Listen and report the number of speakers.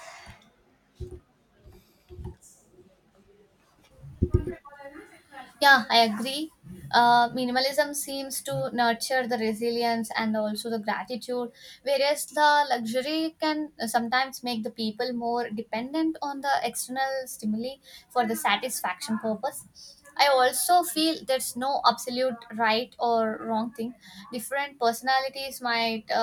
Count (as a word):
one